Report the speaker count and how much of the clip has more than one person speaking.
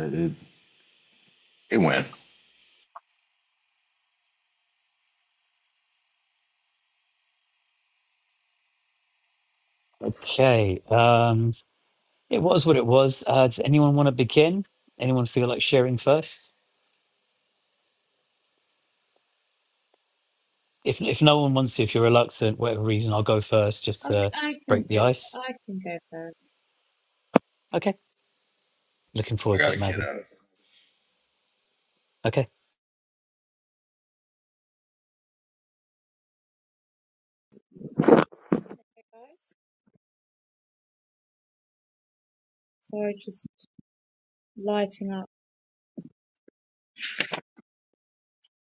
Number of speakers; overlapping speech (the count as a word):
three, about 3%